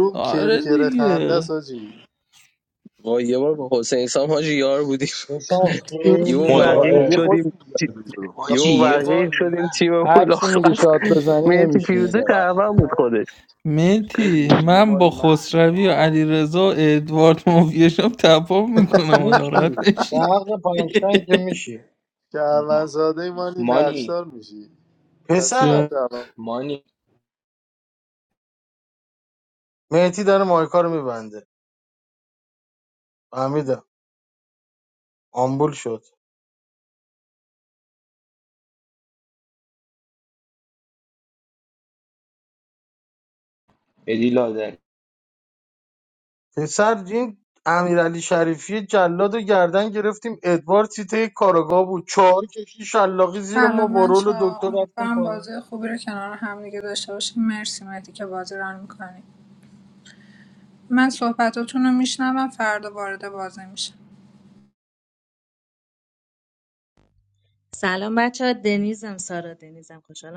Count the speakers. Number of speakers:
eight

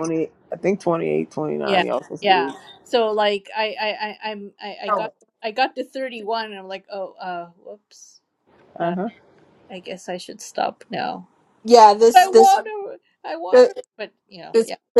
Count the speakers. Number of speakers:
three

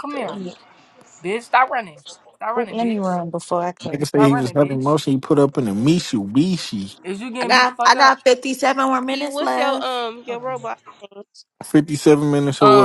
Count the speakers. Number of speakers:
five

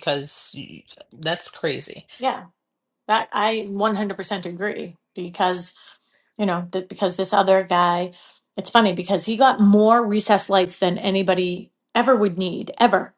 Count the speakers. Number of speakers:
two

